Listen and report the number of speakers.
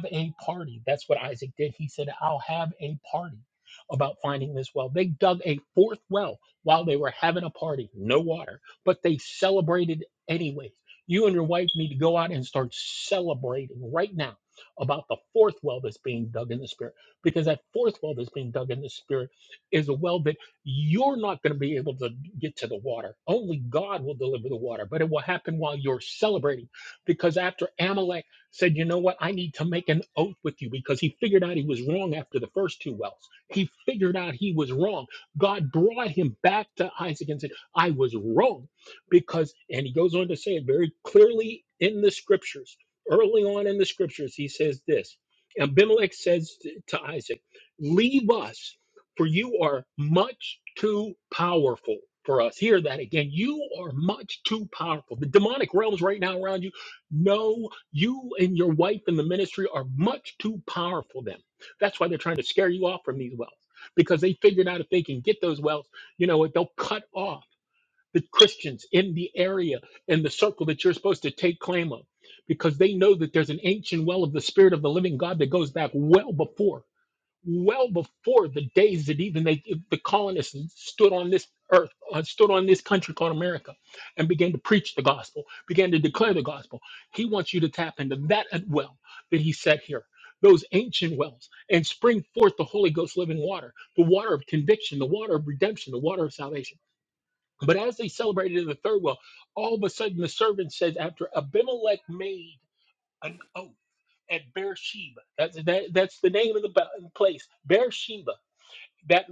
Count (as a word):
one